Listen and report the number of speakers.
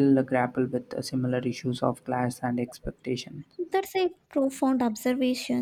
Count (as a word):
two